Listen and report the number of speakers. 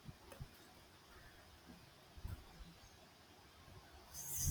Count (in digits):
0